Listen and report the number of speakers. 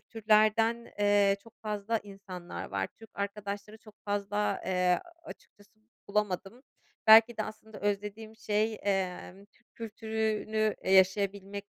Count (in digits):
1